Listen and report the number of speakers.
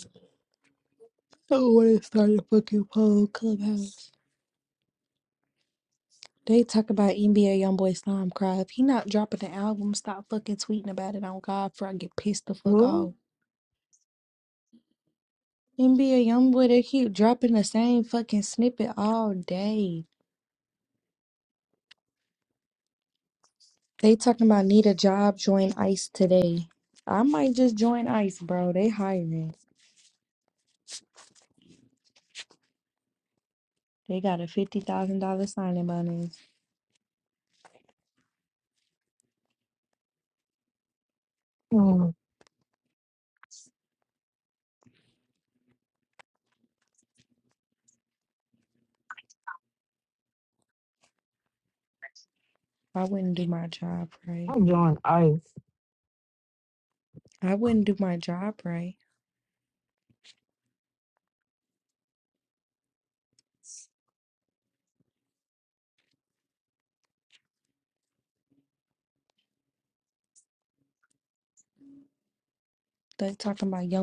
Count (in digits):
2